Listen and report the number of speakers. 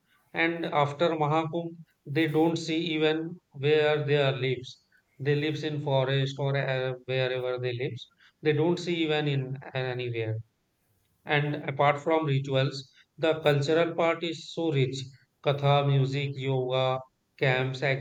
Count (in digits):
1